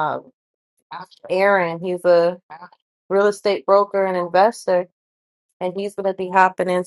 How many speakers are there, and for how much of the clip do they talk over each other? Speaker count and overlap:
one, no overlap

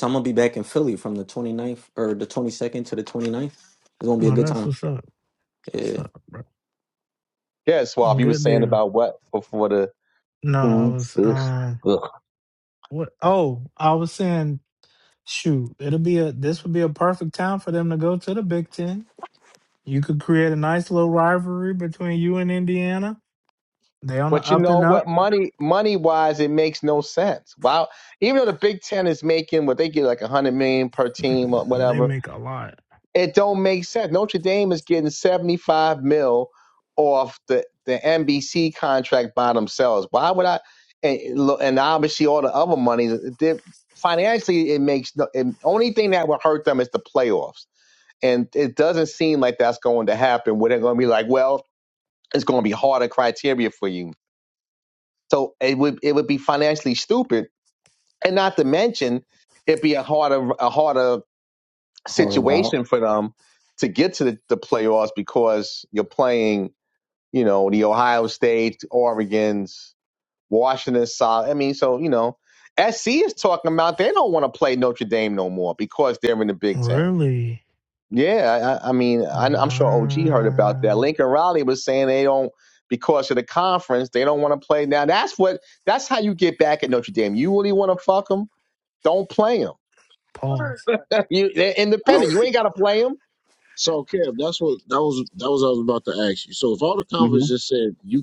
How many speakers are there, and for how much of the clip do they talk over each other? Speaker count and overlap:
four, about 6%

